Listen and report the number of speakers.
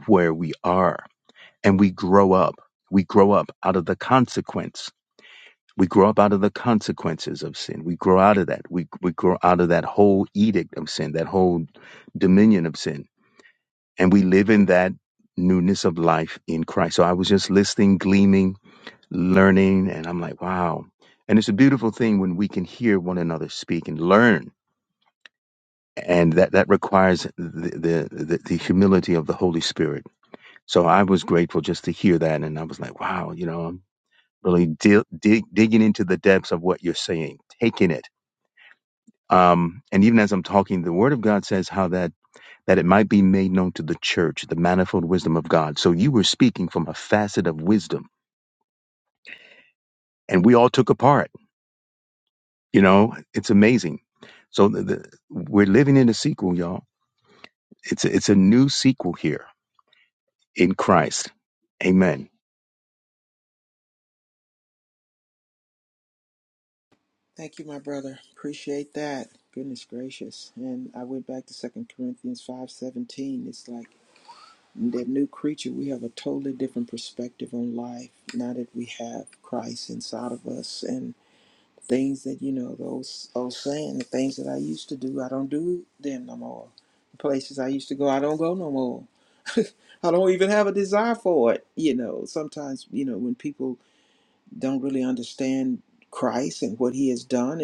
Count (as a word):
two